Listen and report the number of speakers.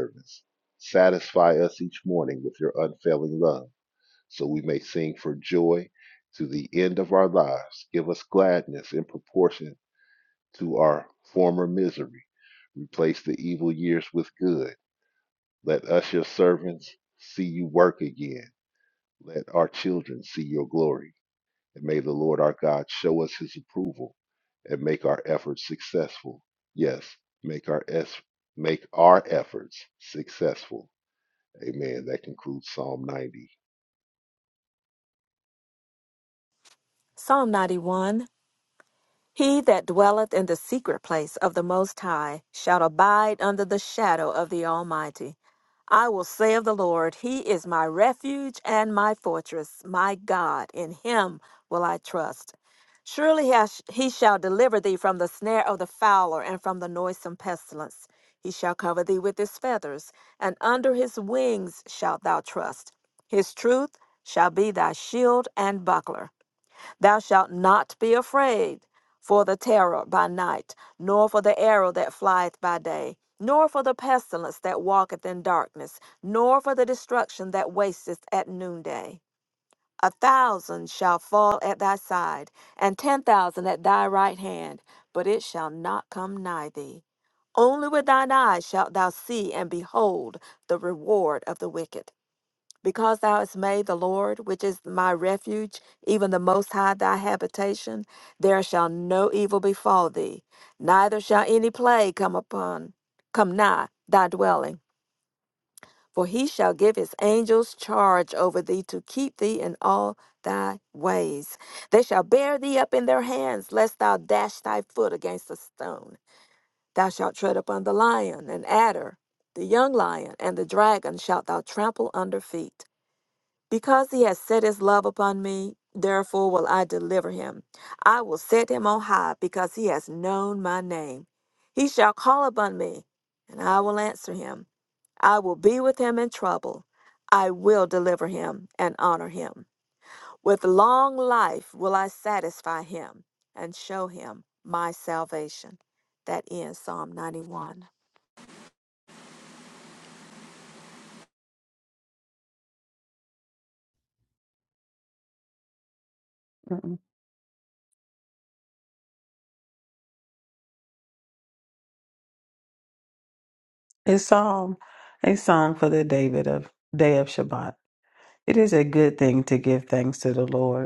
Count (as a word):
three